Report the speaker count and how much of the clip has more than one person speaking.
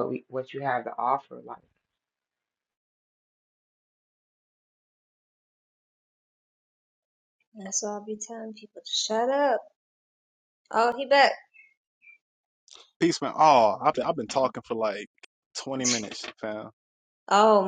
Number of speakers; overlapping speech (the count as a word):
three, no overlap